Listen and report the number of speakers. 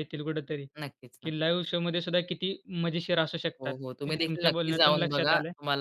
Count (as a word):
two